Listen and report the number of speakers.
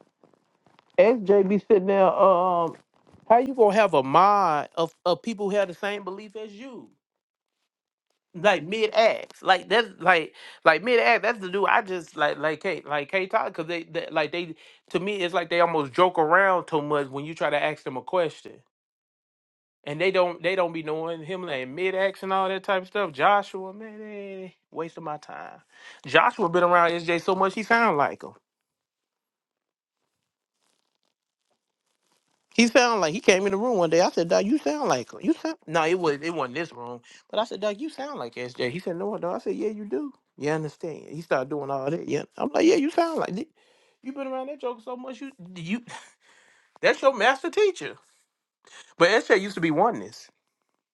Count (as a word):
one